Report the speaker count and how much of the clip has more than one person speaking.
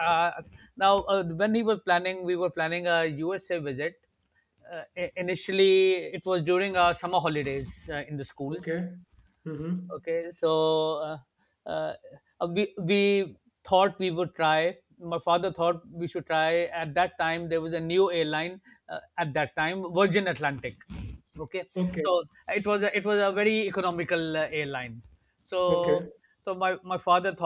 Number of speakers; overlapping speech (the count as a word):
two, about 2%